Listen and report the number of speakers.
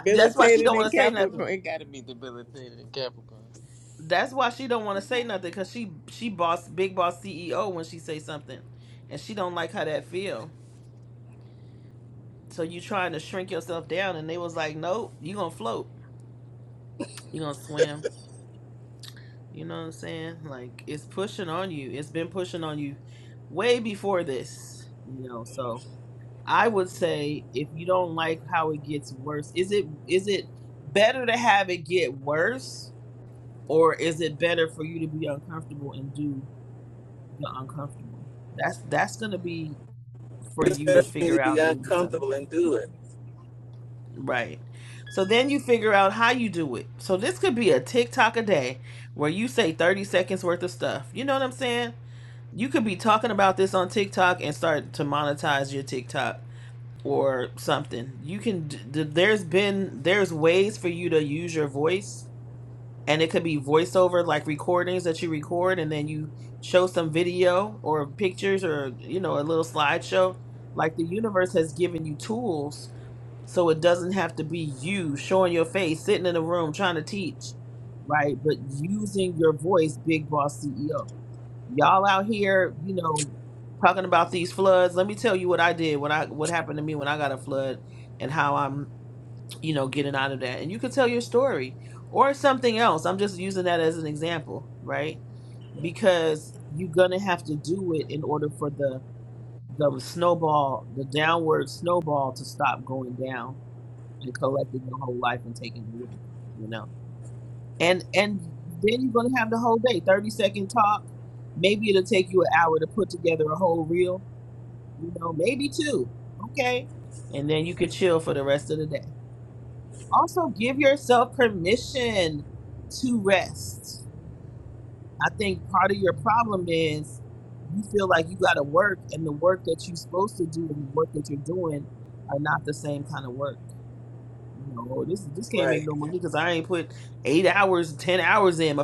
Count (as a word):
three